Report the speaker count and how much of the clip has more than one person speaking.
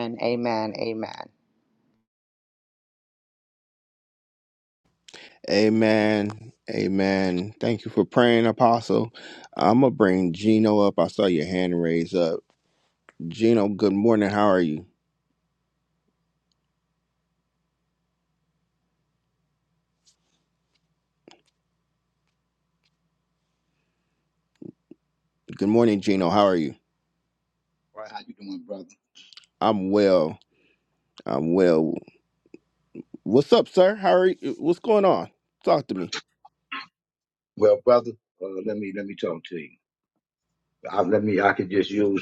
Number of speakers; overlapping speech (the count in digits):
3, no overlap